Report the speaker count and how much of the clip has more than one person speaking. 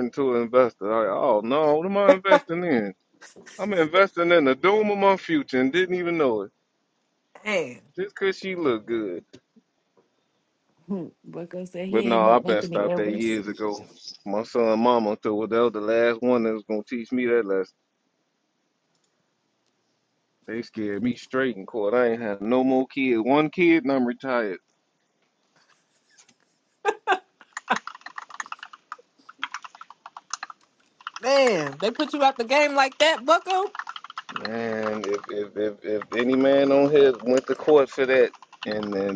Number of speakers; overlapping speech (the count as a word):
three, about 3%